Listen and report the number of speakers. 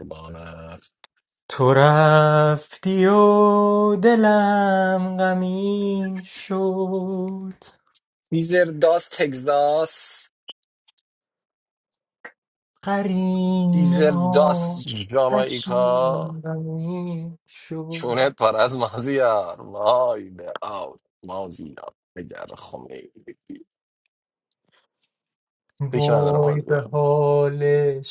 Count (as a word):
two